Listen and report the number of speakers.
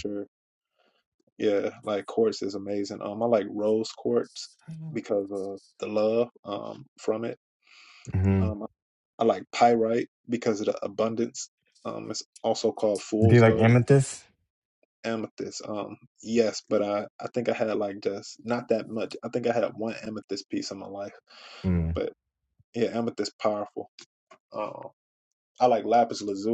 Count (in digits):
2